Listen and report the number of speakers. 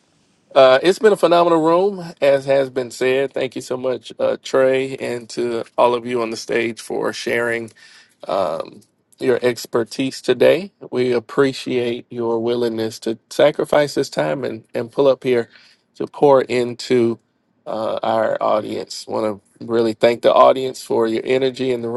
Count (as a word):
one